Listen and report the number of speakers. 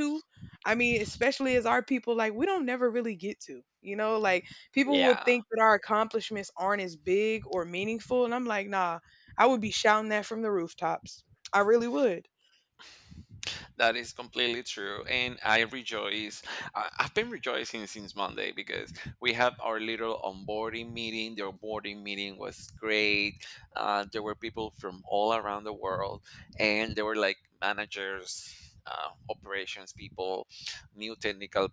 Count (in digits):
2